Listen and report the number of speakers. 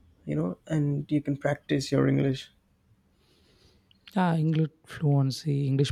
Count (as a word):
two